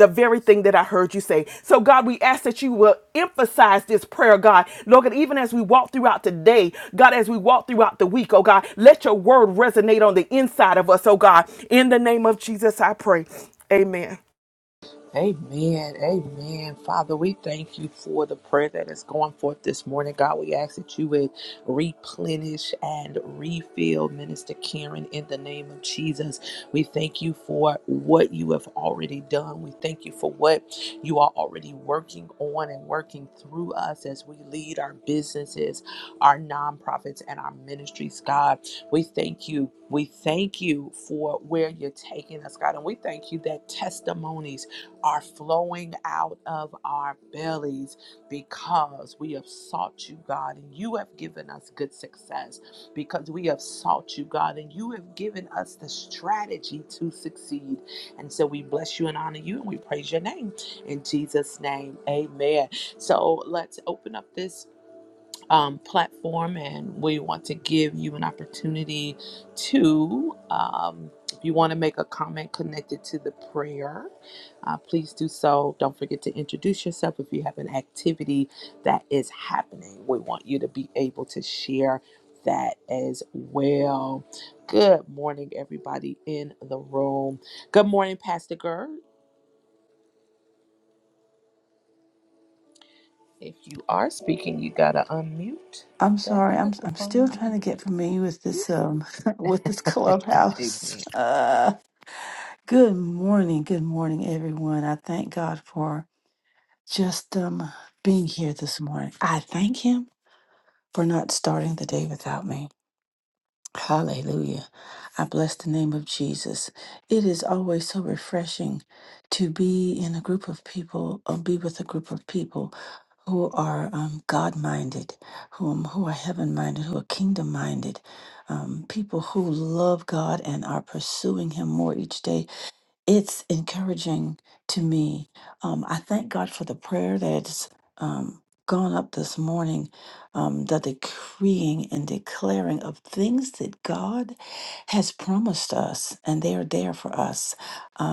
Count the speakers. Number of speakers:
3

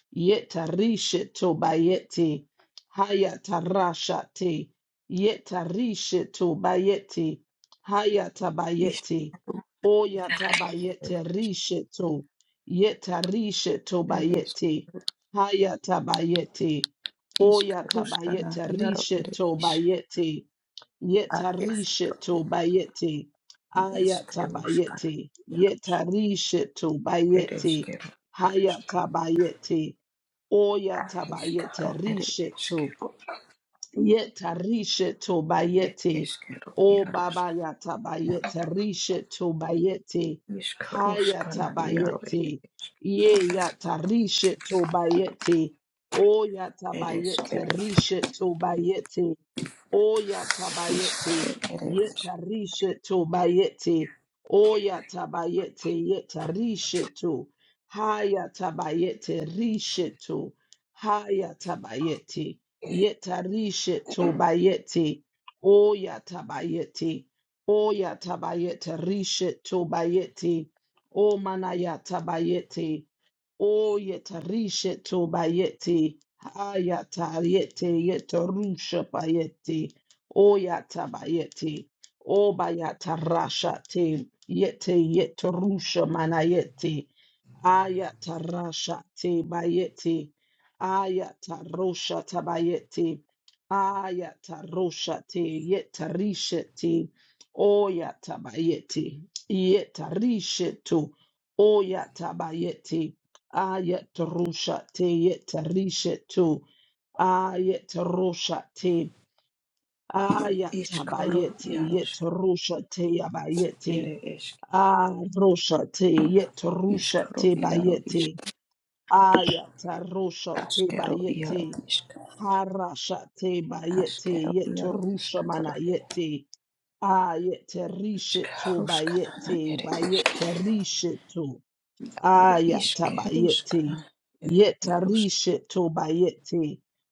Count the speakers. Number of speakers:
2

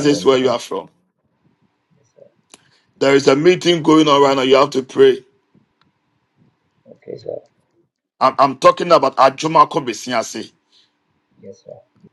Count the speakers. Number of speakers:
2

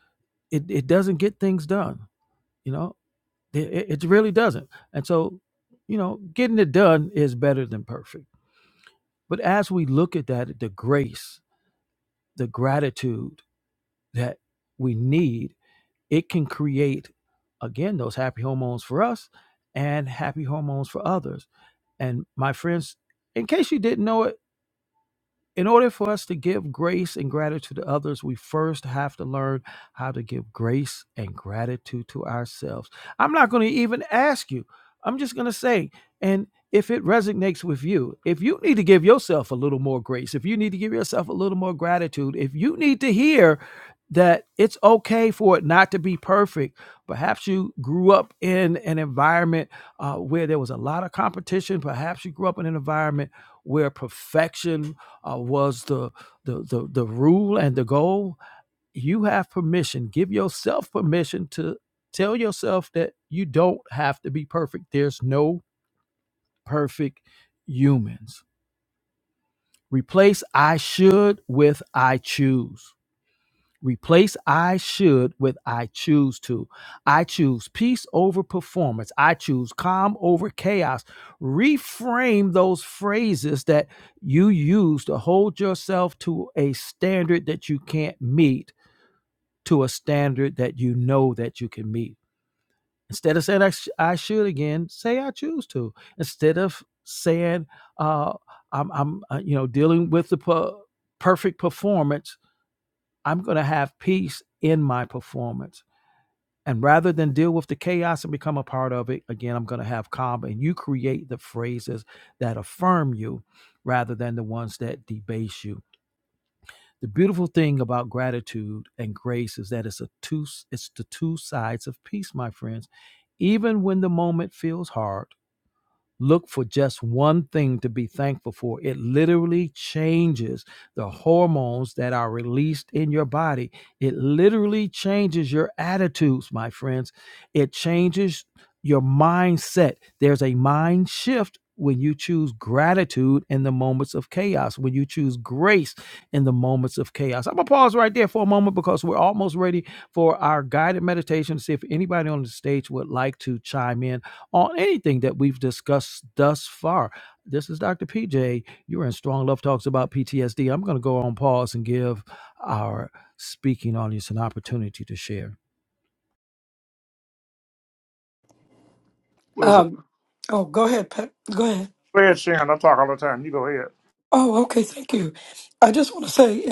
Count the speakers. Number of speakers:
3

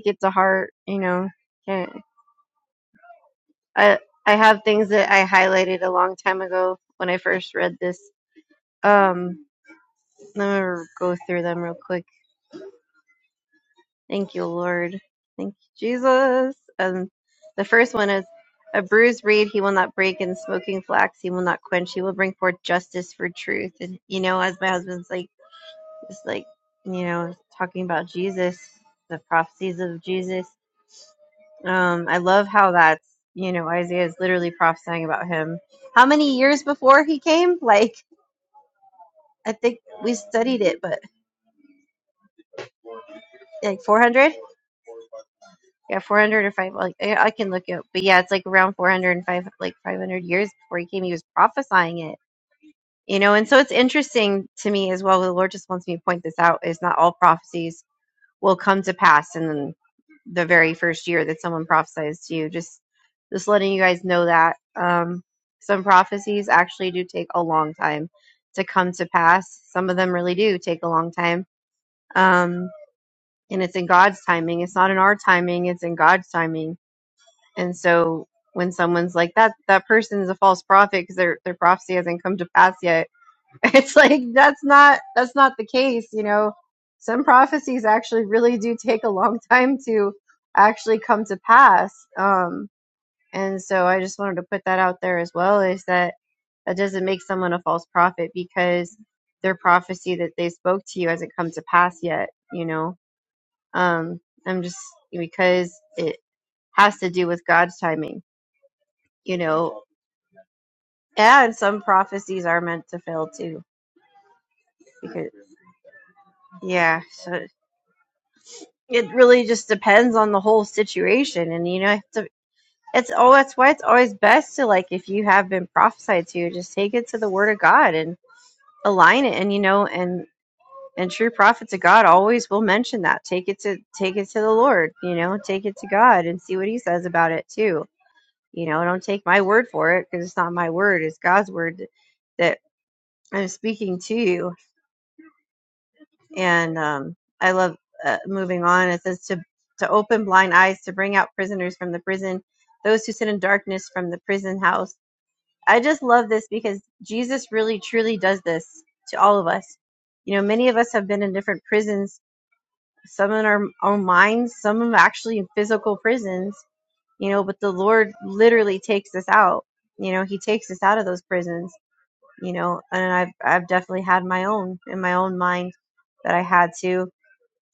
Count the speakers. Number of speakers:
1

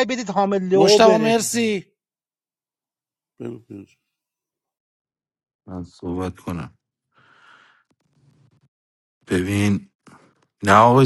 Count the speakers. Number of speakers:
3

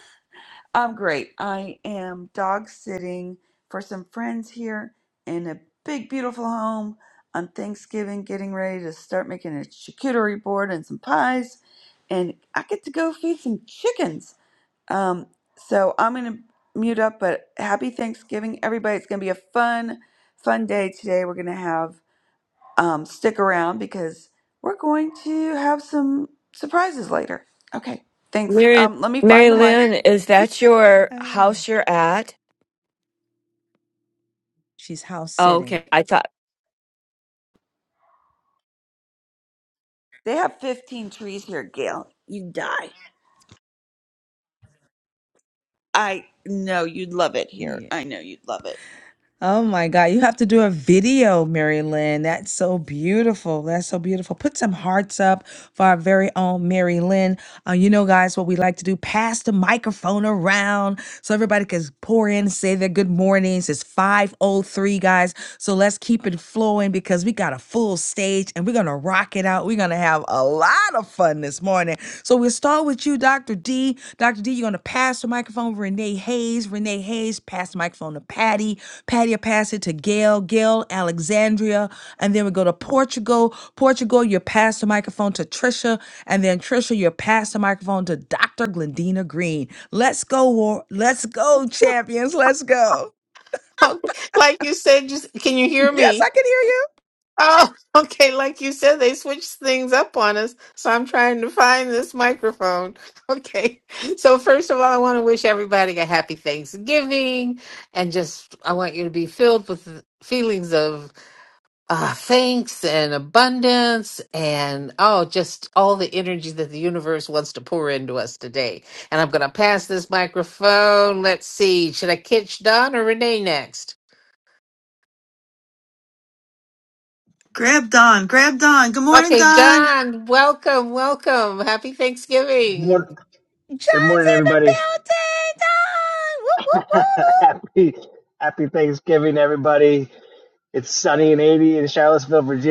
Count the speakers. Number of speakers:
6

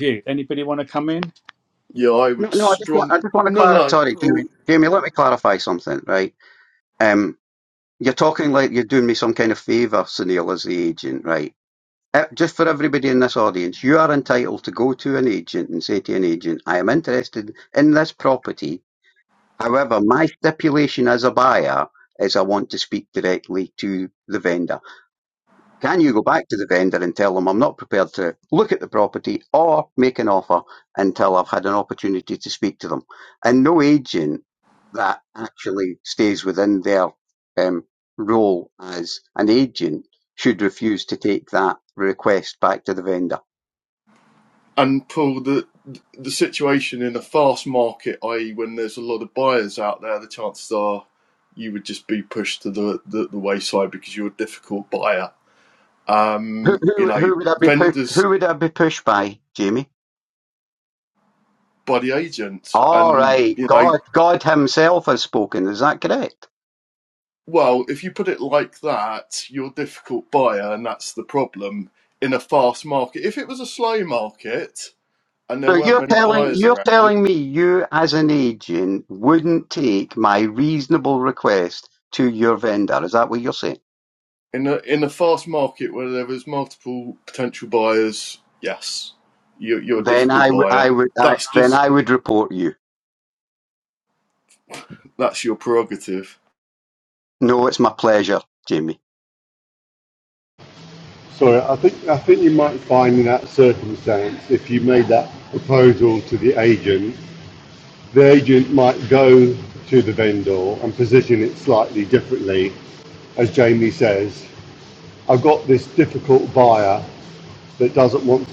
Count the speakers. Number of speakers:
4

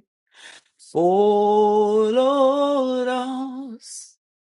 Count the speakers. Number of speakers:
1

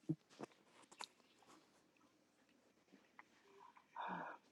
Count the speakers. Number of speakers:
0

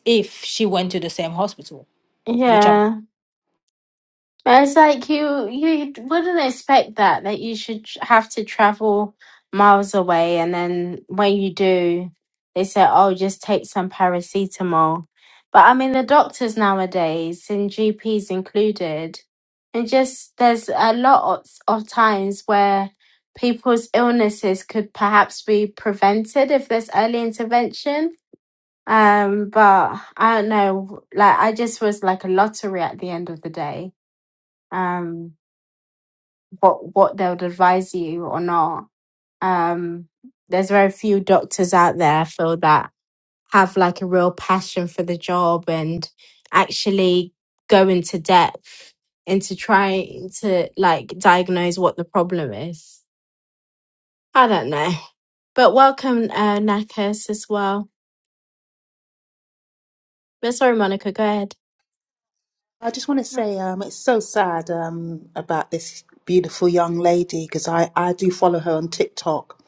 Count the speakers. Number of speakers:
3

